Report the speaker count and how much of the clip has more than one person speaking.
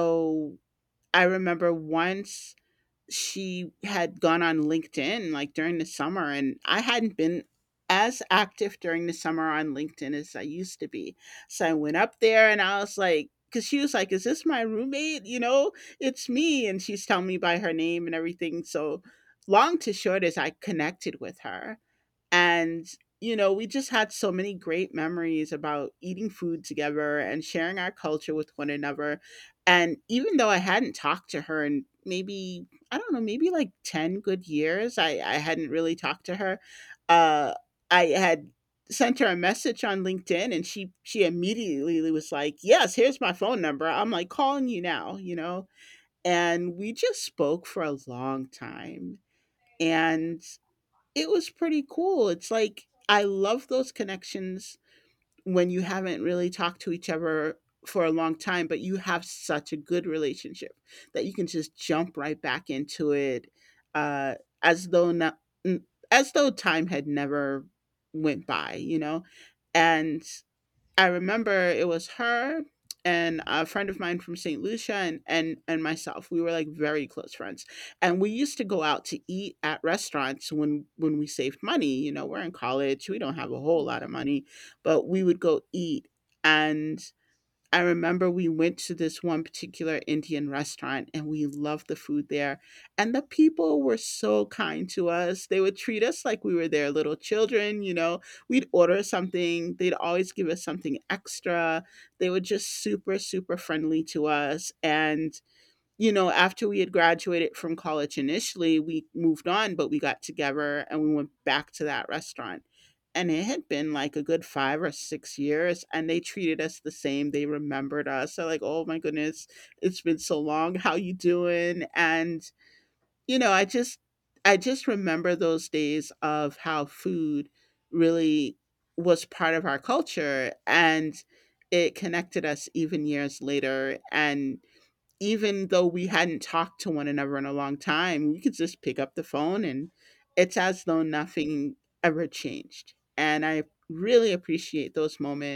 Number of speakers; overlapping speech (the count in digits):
1, no overlap